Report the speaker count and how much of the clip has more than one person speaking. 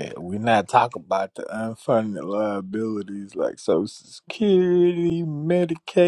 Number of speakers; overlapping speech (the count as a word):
one, no overlap